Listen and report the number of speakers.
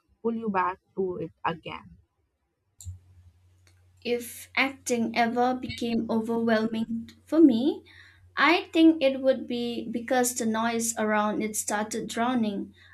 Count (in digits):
2